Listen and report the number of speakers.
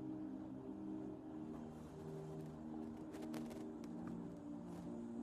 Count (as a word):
zero